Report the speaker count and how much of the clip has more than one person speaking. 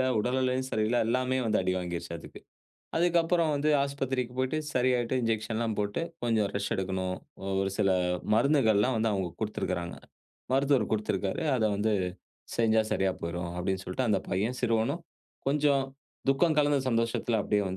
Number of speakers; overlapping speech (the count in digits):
1, no overlap